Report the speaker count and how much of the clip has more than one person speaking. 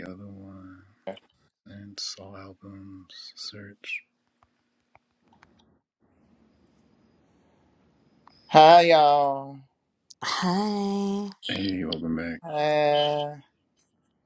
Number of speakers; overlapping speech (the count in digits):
3, no overlap